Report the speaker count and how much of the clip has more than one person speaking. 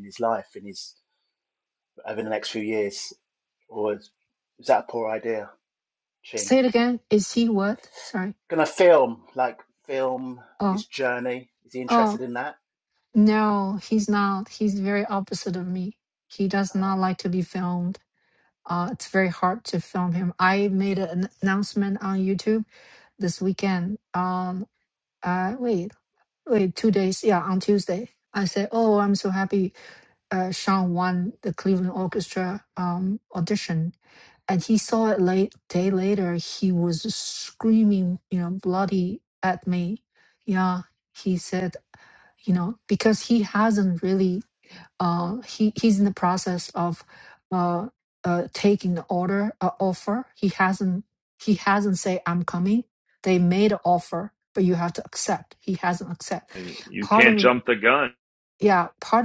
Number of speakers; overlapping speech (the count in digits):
3, about 2%